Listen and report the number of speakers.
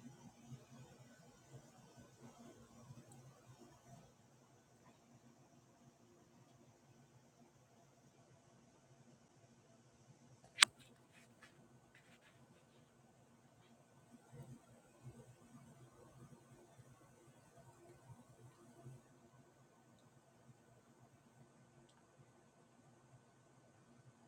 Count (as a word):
zero